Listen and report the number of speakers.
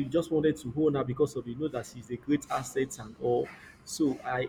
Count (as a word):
one